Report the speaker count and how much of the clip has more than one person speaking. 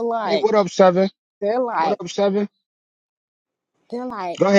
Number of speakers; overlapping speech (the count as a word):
two, about 13%